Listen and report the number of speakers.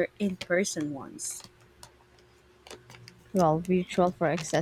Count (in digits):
2